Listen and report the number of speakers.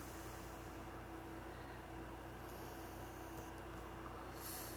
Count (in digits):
0